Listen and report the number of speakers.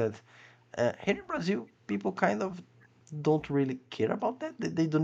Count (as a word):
one